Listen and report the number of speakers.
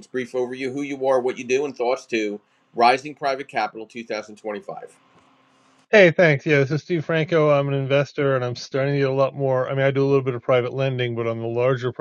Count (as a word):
two